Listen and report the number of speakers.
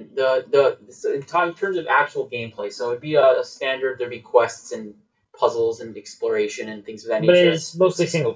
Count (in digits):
2